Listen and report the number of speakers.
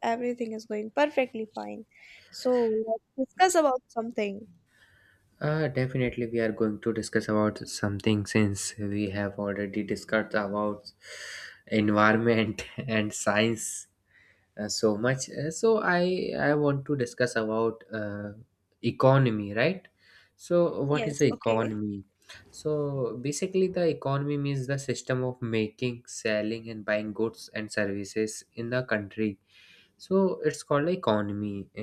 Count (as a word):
two